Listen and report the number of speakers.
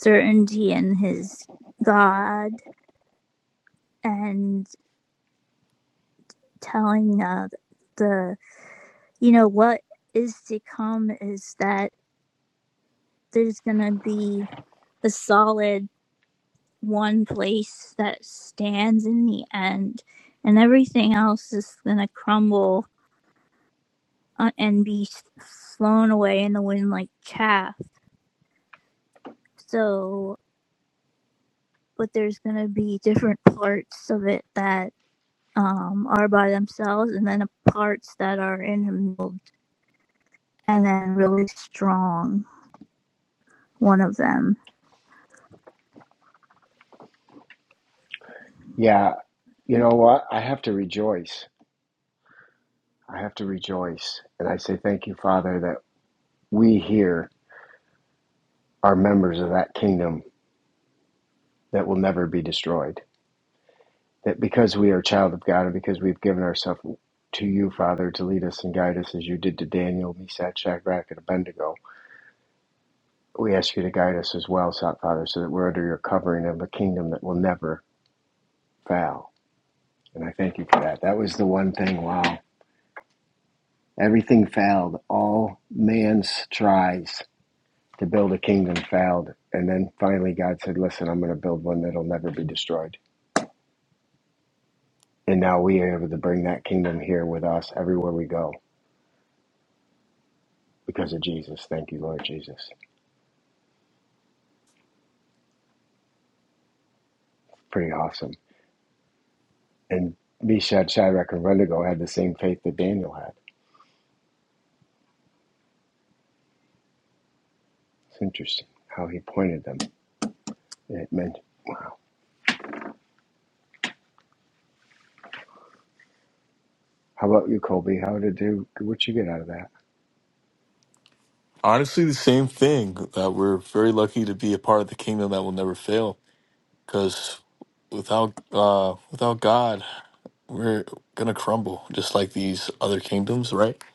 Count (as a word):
three